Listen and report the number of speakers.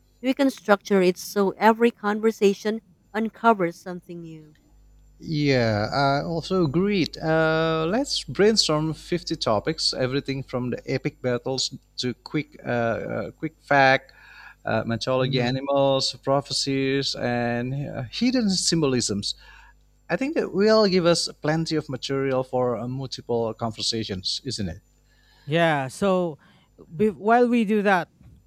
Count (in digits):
3